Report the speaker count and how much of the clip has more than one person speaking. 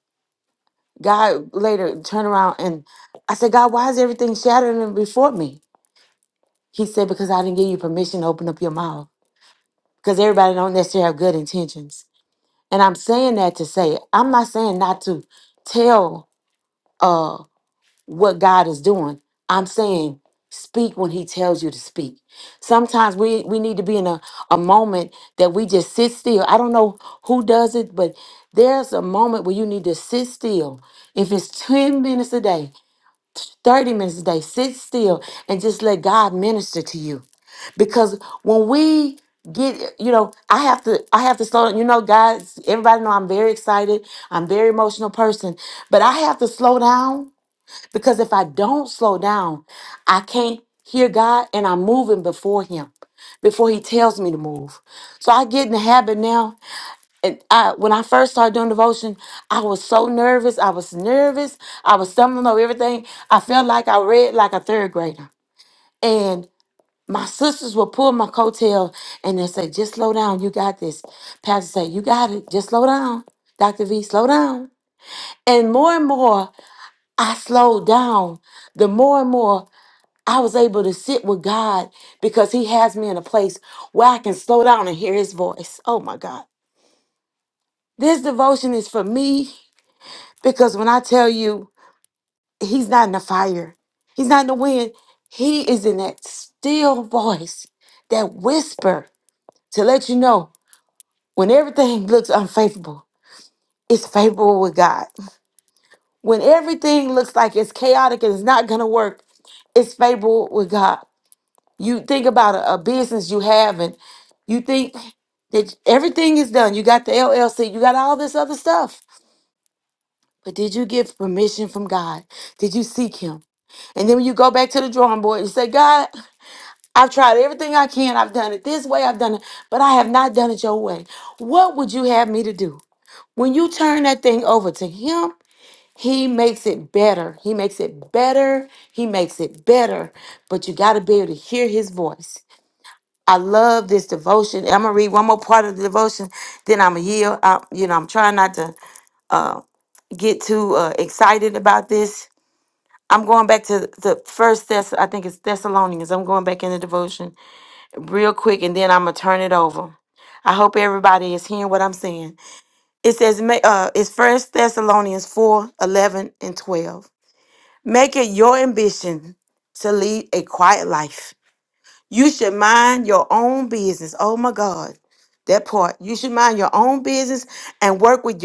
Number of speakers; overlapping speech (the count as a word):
one, no overlap